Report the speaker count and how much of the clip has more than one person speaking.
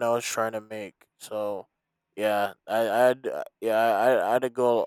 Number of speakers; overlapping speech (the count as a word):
one, no overlap